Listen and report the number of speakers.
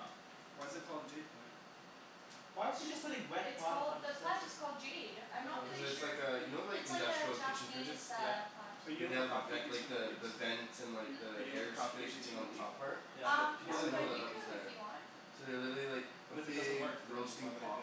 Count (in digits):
4